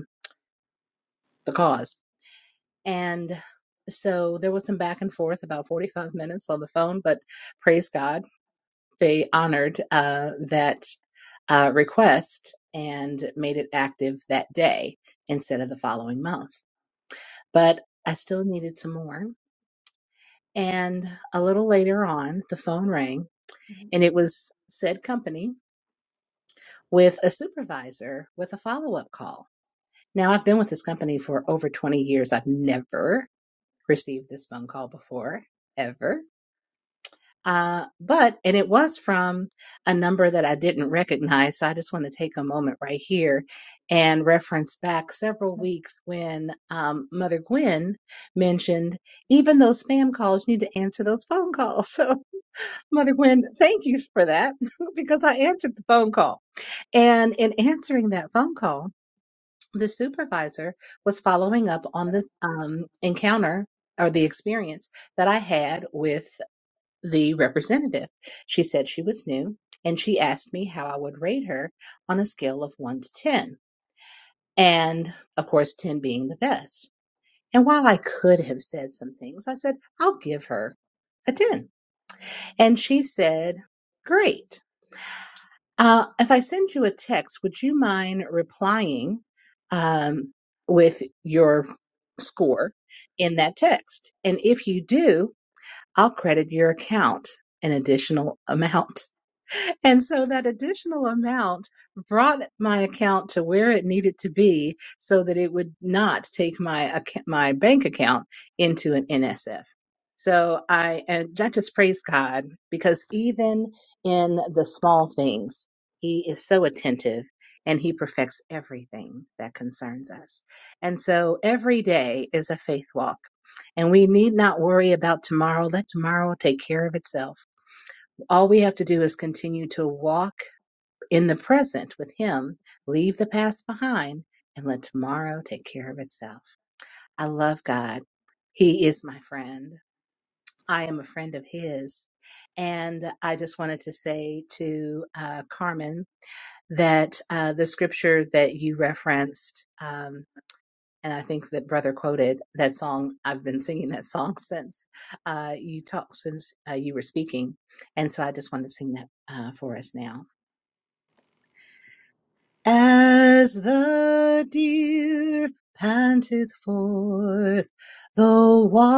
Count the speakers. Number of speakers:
1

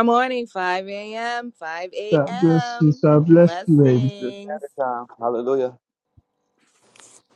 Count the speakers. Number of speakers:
3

